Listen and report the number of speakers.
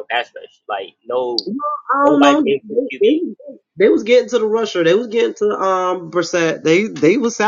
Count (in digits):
2